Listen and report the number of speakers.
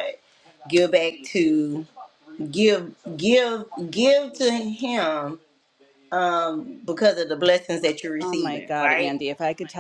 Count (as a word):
two